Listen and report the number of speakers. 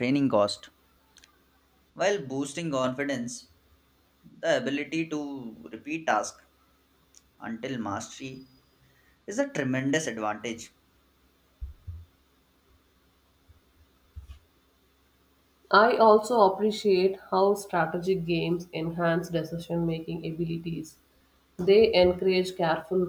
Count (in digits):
2